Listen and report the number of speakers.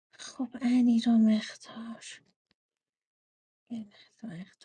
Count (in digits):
1